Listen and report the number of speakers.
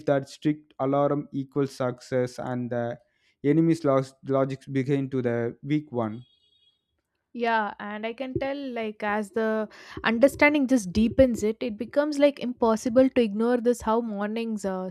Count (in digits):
2